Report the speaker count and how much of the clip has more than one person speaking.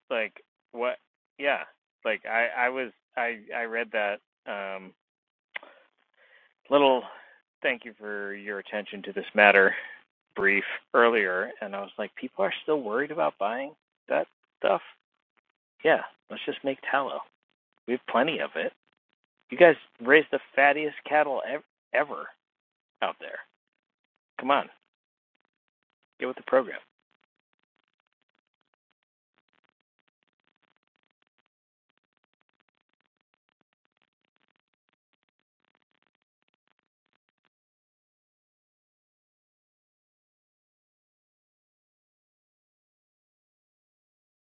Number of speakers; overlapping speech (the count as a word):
one, no overlap